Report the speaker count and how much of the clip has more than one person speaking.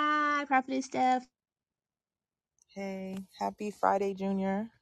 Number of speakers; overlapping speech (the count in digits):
2, no overlap